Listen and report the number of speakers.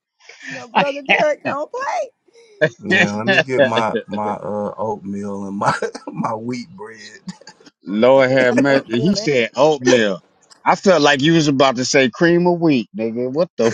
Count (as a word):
three